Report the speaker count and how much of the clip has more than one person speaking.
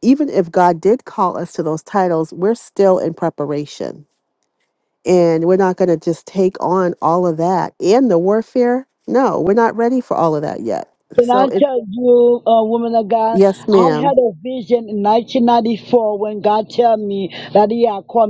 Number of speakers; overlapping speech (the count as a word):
two, about 3%